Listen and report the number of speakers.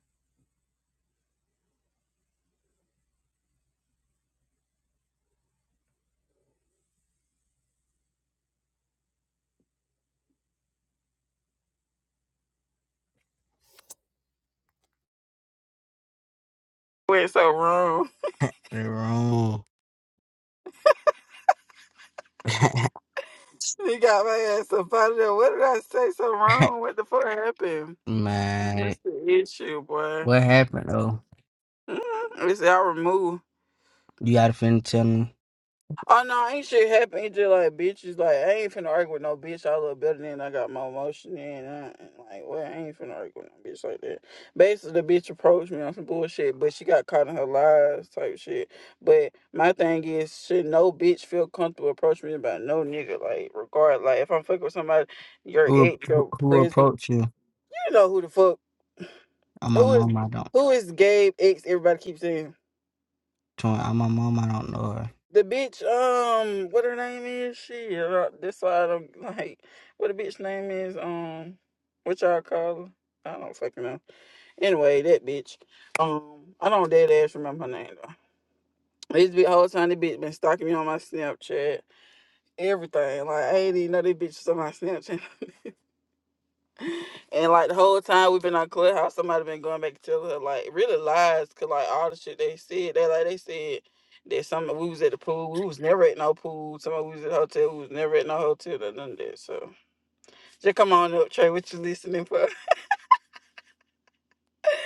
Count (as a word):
two